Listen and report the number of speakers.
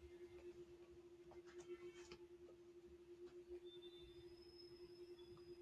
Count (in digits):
0